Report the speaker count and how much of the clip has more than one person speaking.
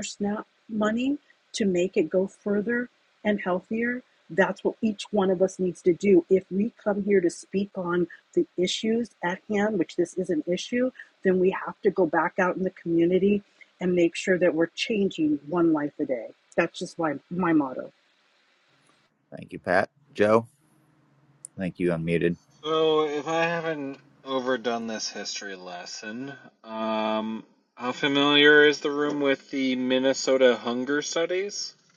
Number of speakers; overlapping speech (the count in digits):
3, no overlap